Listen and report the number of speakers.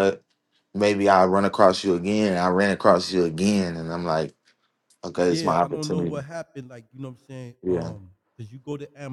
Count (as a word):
two